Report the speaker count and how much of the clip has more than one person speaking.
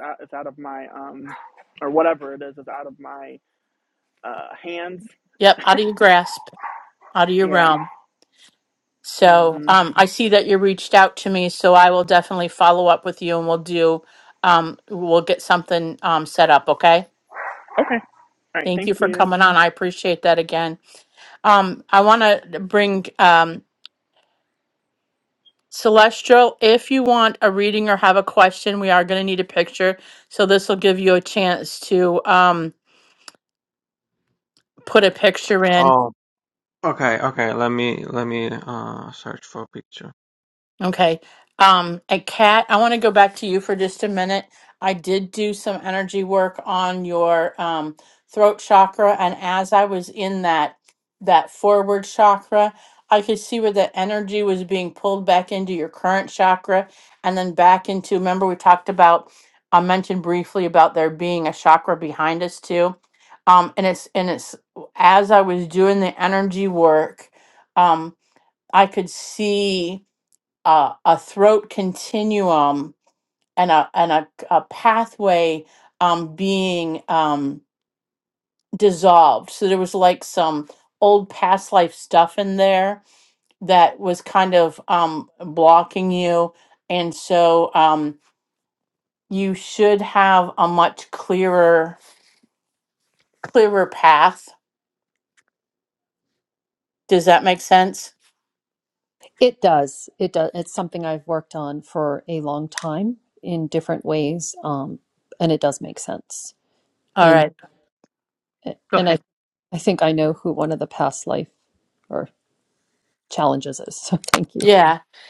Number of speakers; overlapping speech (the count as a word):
four, about 2%